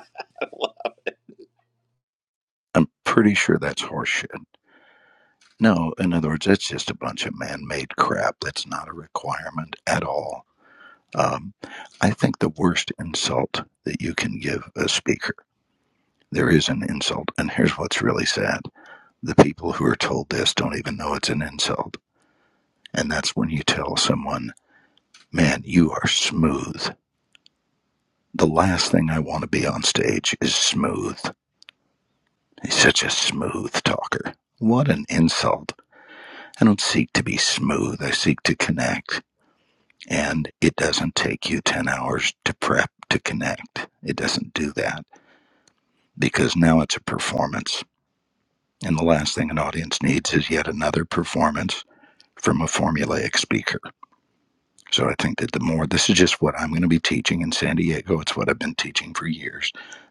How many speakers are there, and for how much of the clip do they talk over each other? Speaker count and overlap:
one, no overlap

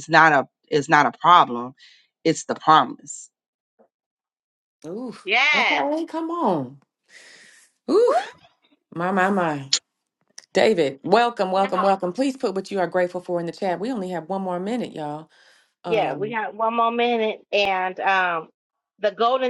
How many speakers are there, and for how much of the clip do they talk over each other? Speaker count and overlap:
three, about 8%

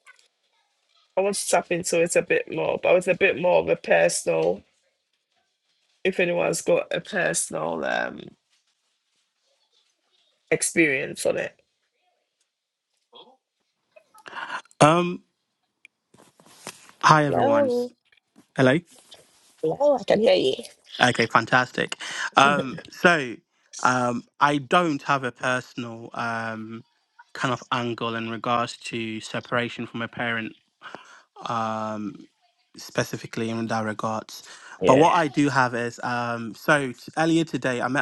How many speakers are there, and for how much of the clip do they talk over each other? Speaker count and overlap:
two, about 2%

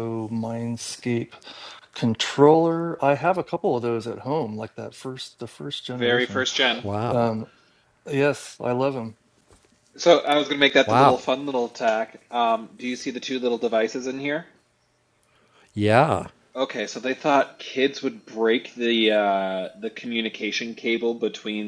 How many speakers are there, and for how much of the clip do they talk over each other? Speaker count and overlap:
three, about 5%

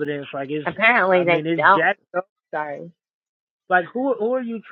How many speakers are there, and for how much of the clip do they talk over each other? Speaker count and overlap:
two, about 17%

